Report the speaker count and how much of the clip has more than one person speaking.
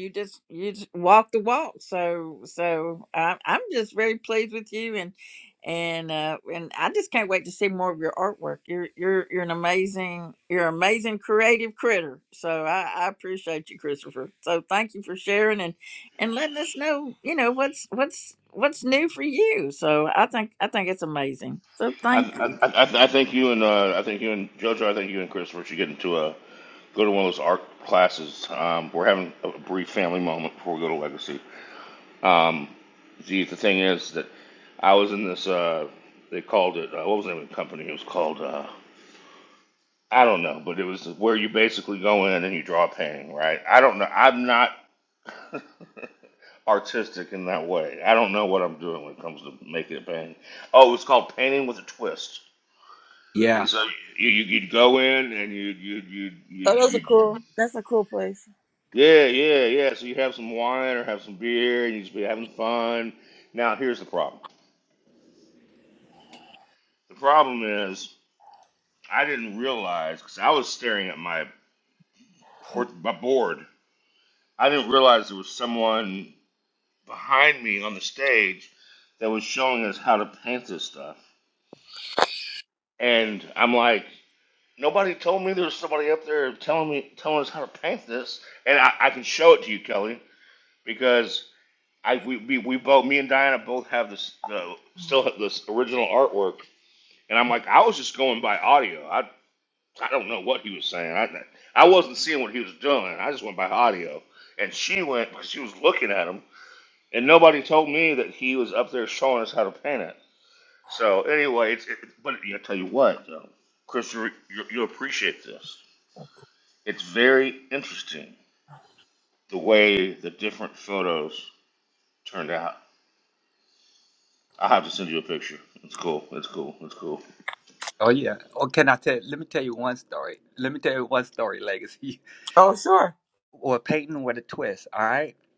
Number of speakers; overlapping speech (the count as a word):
four, about 1%